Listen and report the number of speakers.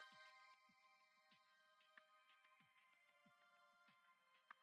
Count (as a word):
zero